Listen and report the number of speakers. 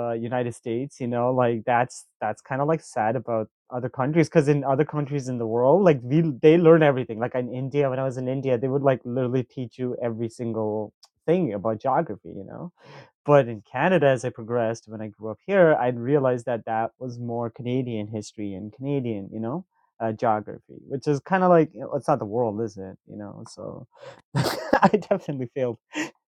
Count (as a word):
one